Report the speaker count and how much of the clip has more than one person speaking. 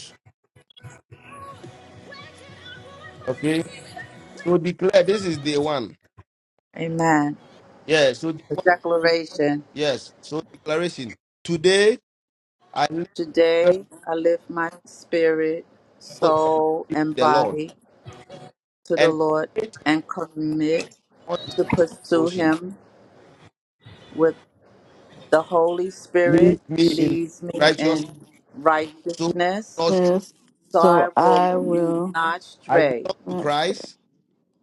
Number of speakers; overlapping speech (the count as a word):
three, about 14%